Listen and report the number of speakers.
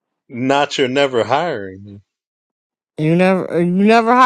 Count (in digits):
2